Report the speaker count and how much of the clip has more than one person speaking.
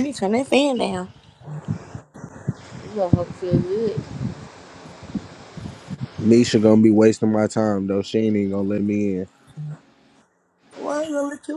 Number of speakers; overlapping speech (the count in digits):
3, no overlap